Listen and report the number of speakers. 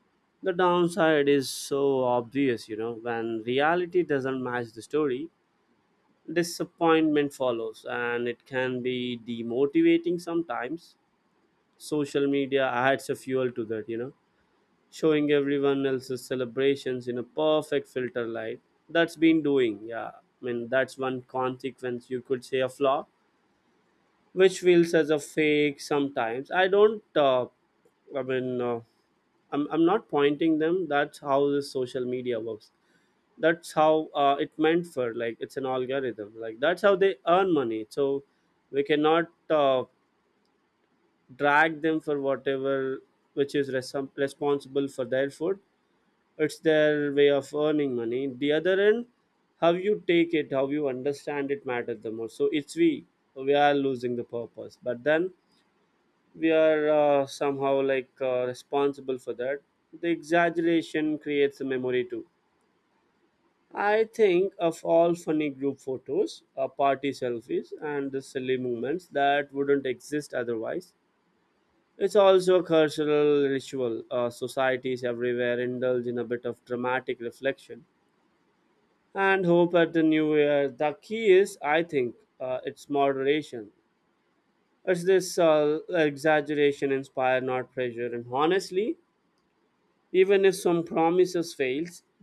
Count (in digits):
1